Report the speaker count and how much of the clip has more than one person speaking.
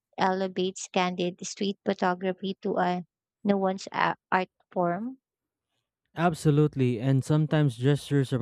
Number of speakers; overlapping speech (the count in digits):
2, no overlap